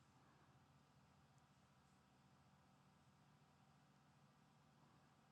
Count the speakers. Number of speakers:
0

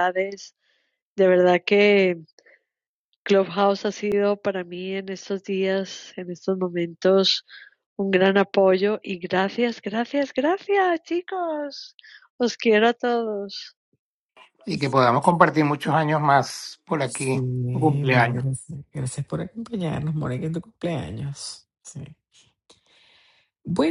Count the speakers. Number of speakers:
3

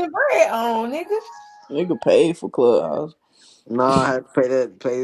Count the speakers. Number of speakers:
3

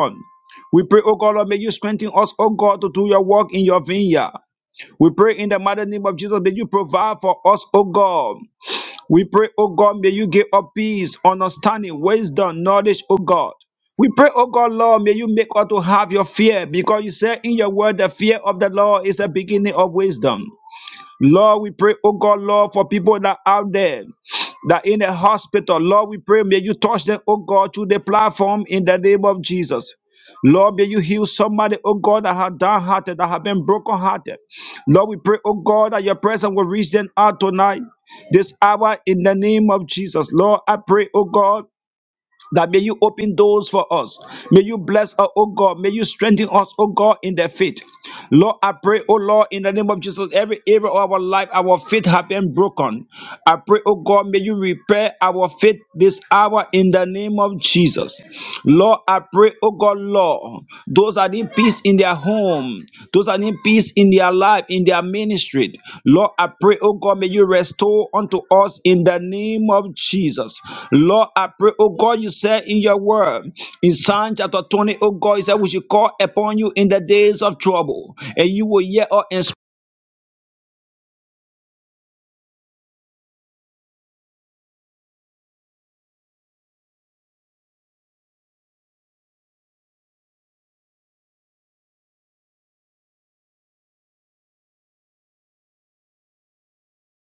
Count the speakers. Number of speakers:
1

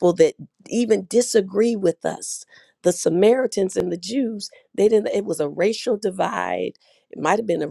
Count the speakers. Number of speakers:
1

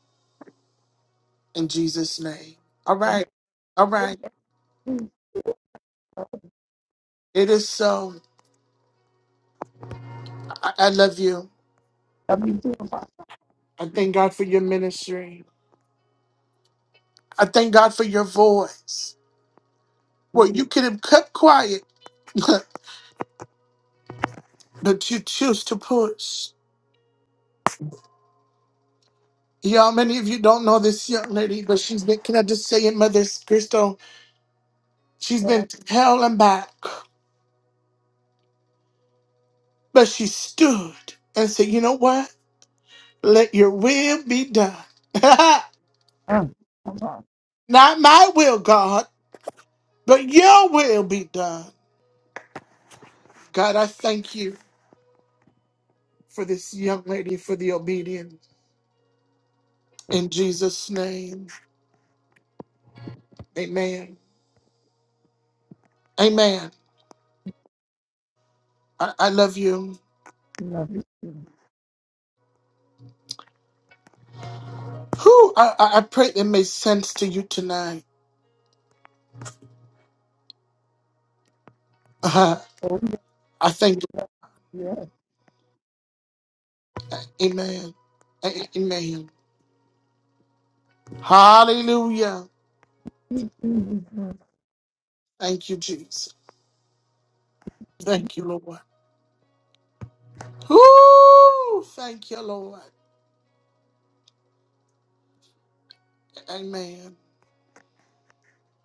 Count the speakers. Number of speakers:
2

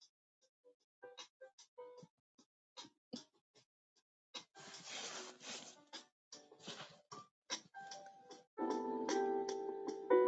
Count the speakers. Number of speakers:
0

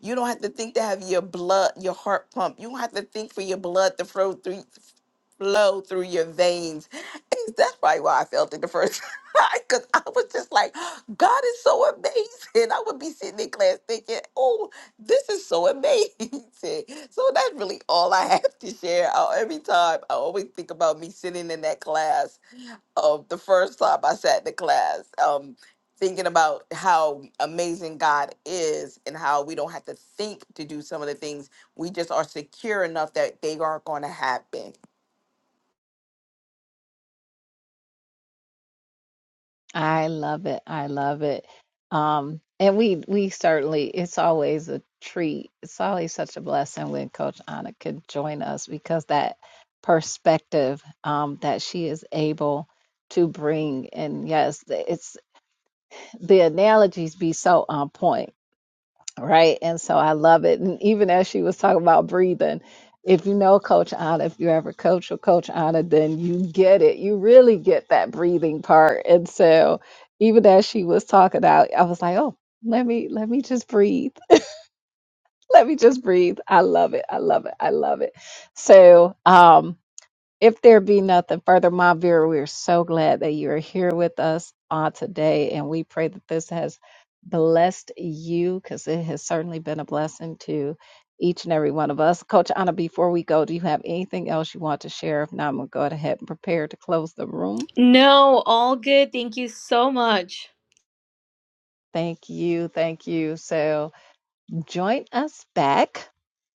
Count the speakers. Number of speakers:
3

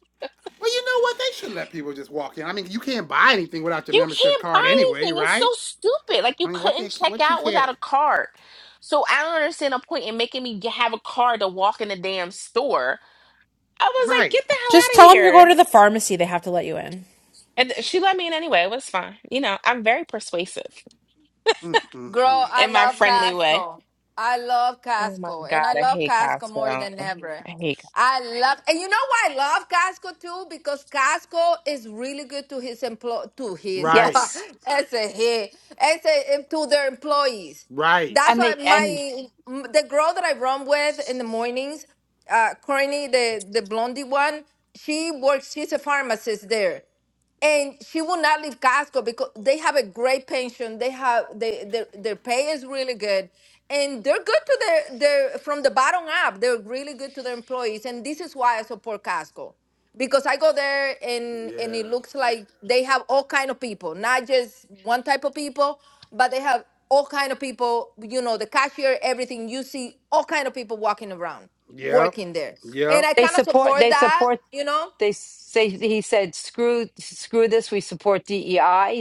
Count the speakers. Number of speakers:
5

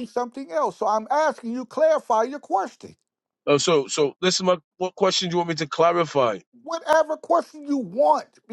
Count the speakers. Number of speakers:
2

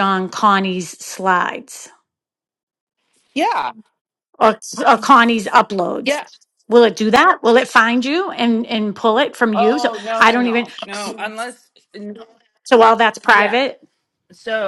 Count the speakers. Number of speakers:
2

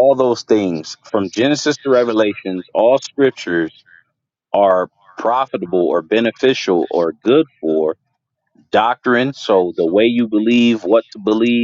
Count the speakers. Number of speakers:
1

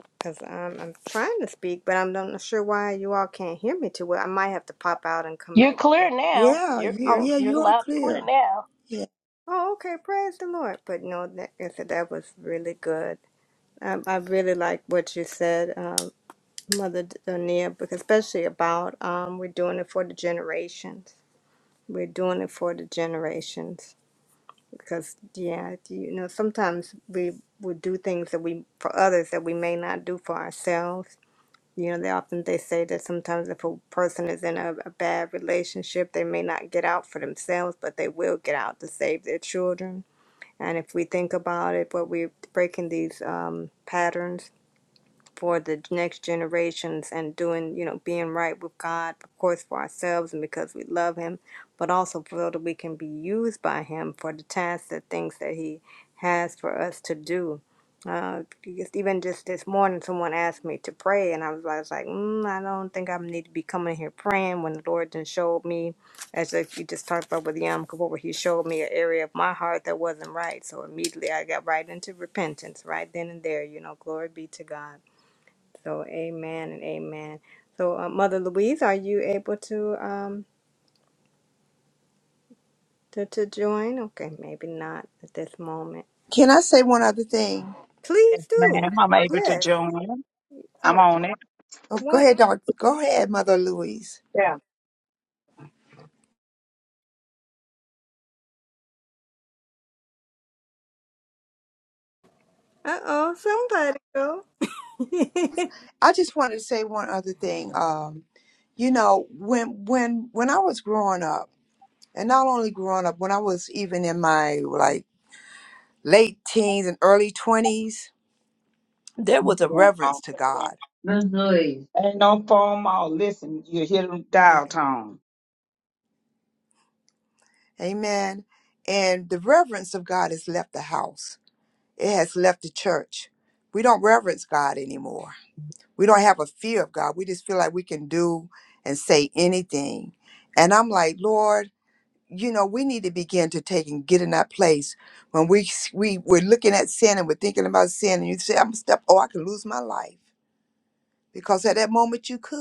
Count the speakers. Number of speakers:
4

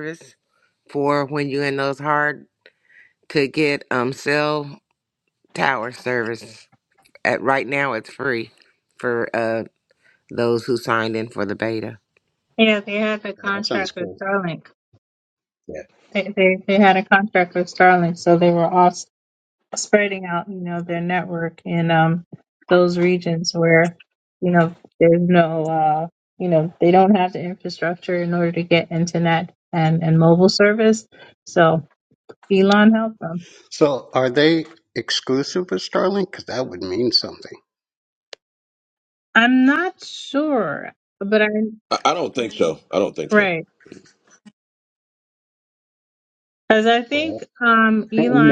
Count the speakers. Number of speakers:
4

